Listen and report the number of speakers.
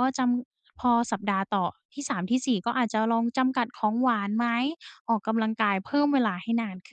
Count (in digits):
1